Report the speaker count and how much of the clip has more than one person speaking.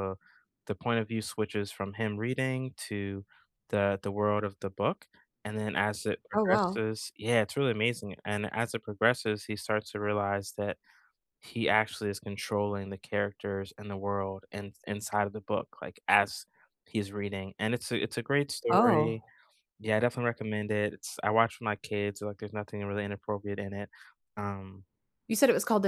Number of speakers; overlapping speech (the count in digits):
2, about 3%